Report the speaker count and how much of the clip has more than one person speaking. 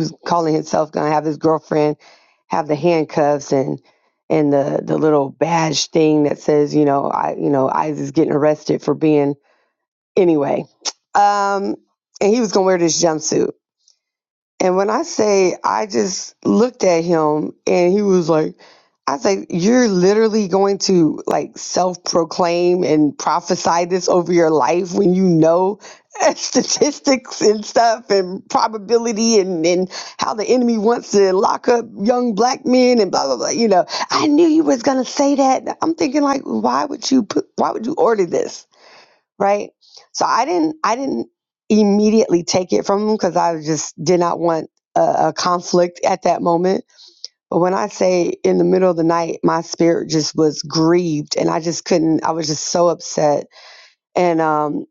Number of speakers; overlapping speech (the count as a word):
one, no overlap